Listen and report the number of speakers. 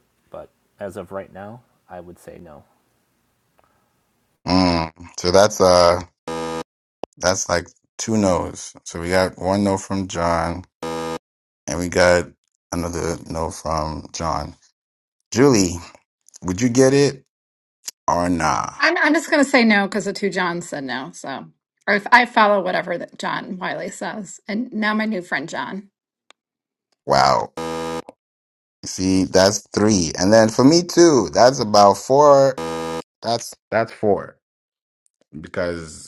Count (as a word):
three